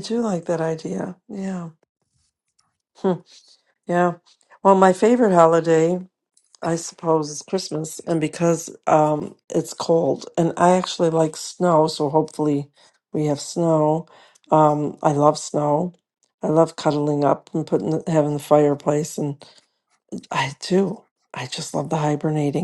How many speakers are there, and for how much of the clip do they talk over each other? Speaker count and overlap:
one, no overlap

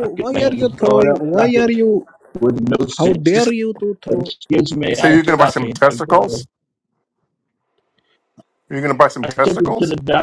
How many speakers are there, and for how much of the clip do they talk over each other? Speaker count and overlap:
three, about 41%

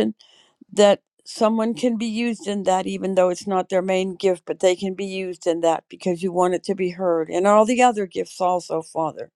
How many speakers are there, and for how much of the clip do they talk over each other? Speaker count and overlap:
one, no overlap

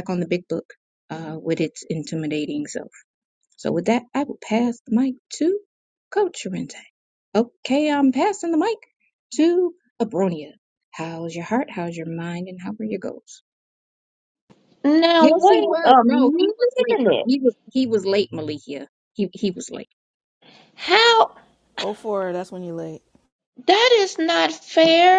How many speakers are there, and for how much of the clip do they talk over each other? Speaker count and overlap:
three, about 8%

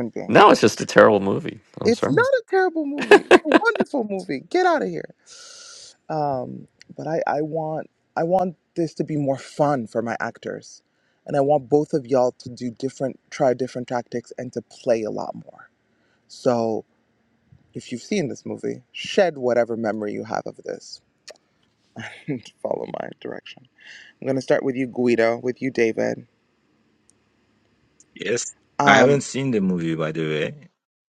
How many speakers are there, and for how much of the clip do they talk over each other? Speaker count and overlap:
three, about 3%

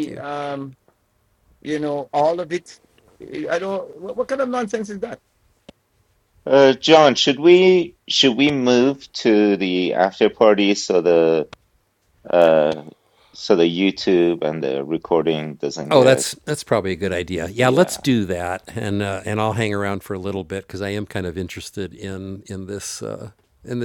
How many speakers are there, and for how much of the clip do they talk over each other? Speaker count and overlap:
three, about 4%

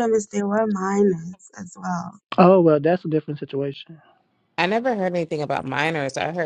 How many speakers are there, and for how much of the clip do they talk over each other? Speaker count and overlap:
three, no overlap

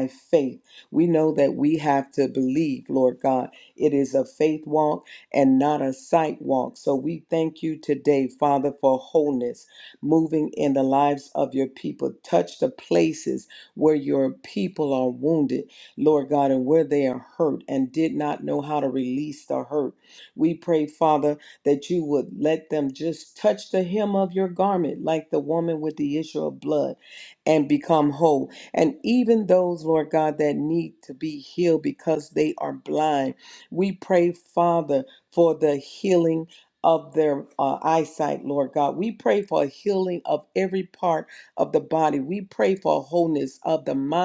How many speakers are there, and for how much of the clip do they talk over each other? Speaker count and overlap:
one, no overlap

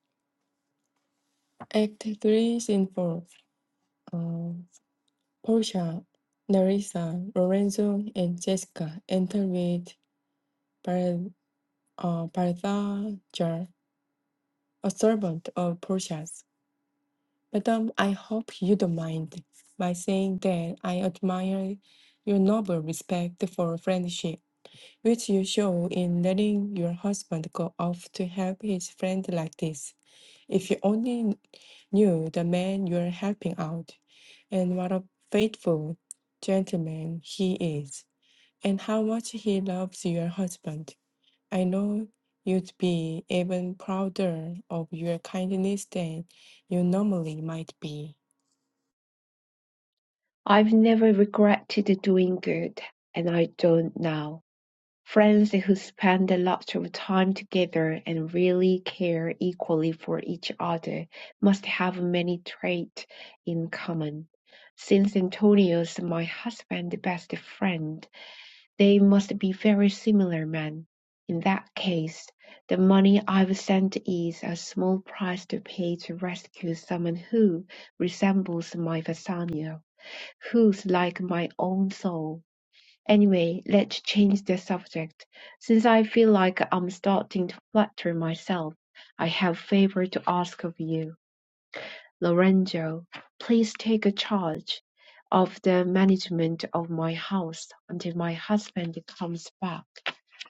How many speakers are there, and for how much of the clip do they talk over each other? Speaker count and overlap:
two, no overlap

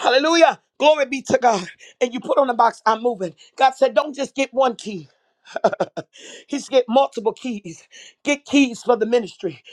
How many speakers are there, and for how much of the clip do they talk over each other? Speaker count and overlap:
one, no overlap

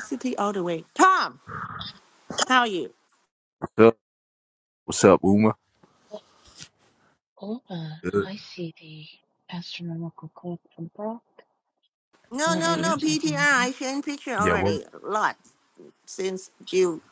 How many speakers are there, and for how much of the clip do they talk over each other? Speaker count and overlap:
three, about 11%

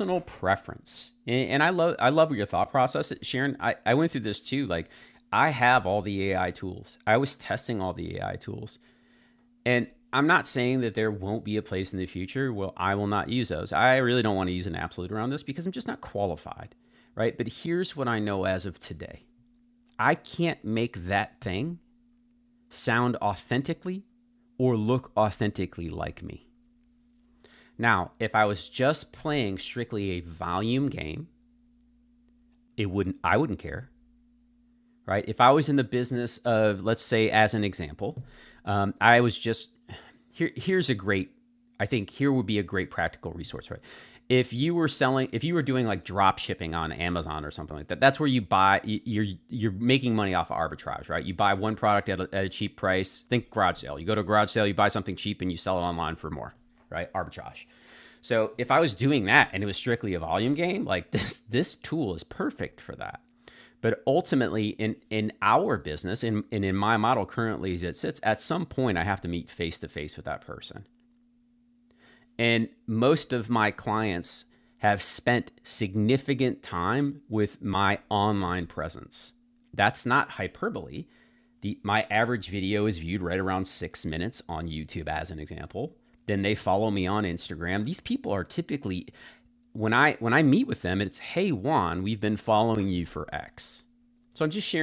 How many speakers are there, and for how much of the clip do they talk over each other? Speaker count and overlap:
one, no overlap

